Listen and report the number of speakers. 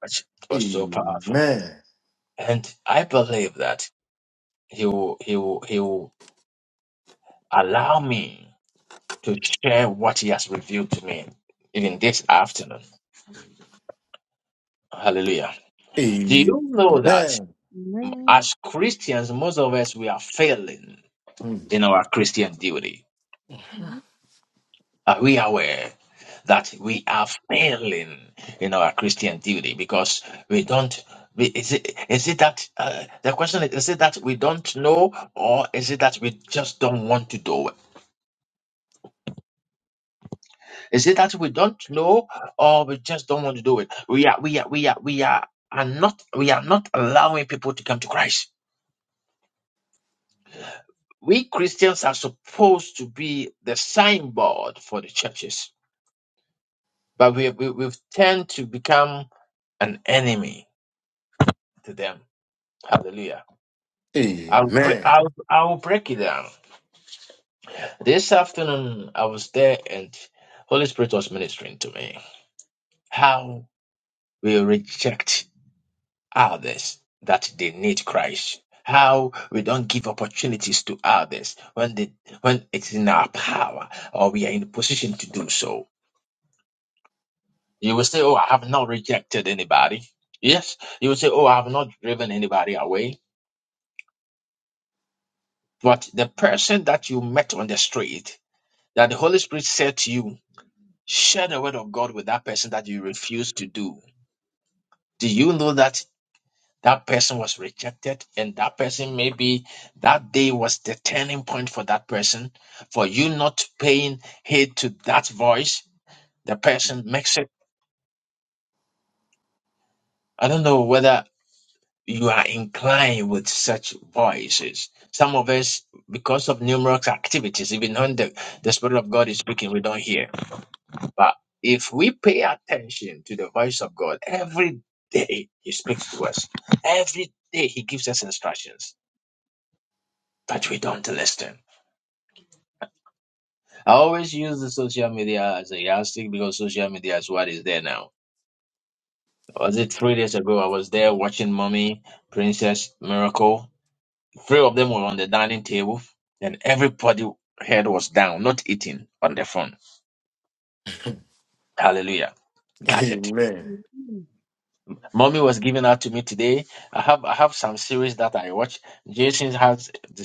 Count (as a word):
three